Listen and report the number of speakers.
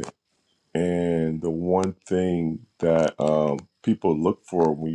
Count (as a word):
one